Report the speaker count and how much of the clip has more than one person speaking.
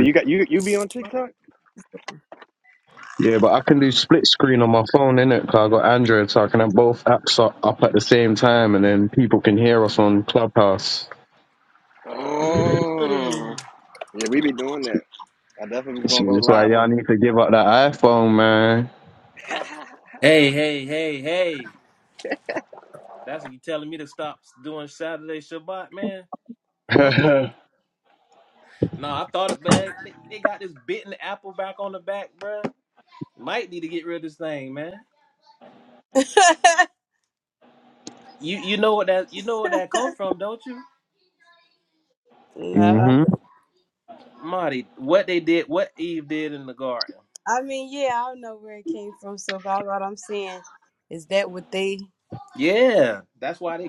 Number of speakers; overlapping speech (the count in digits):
4, about 3%